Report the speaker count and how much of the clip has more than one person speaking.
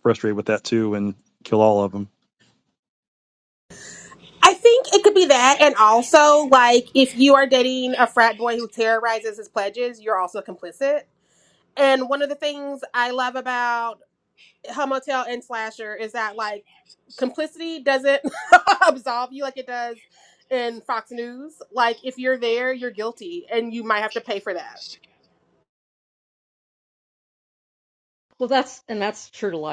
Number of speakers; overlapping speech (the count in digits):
3, no overlap